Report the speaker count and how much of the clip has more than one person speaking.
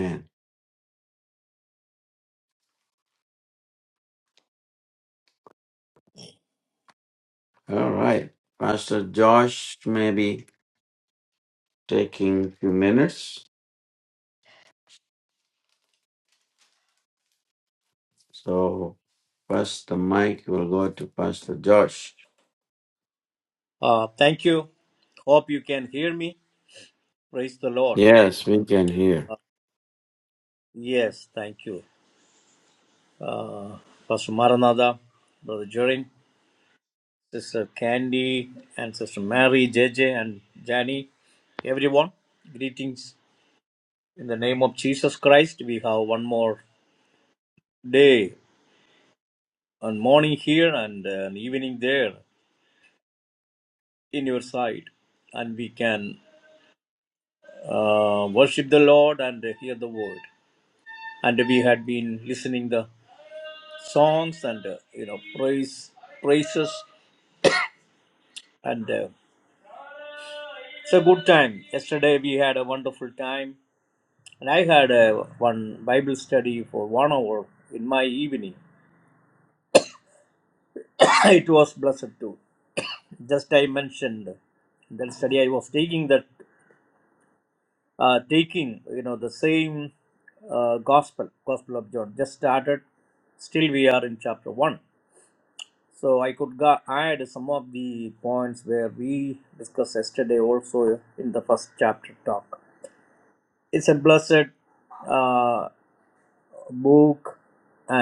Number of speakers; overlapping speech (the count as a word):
two, under 1%